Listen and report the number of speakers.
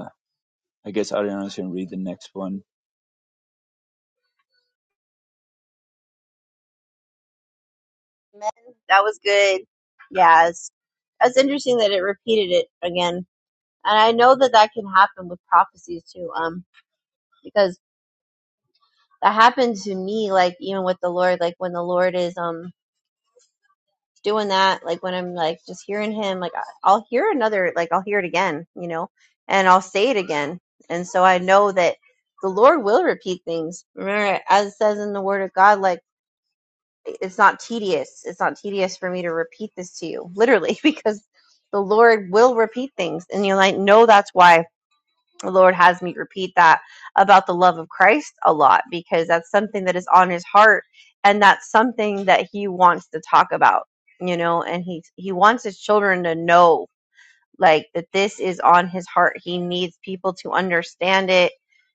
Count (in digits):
2